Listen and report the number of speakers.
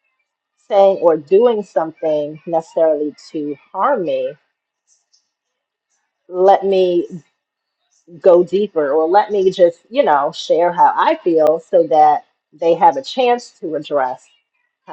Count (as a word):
one